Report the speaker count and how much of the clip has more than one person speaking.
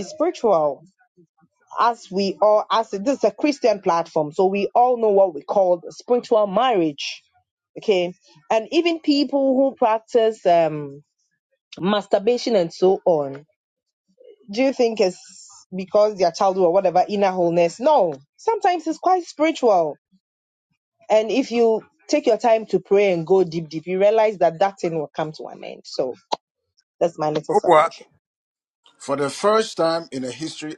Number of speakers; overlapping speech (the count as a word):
two, about 1%